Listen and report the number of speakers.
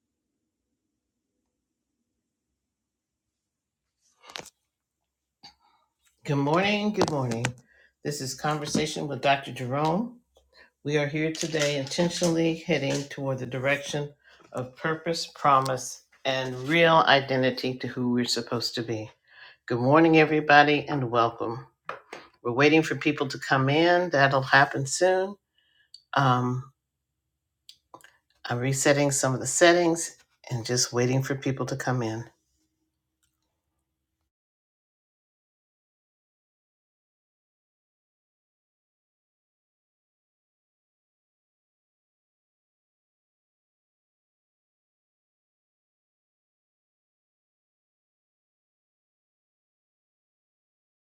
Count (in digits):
1